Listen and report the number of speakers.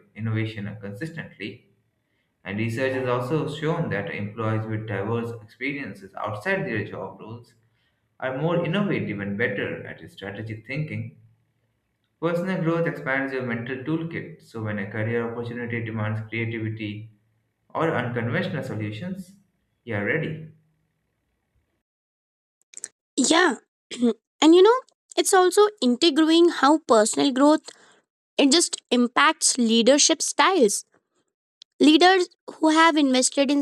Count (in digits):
2